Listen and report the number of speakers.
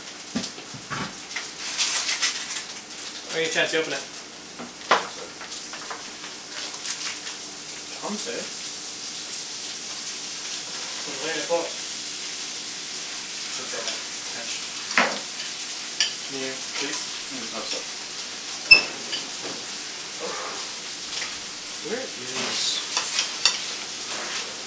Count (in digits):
2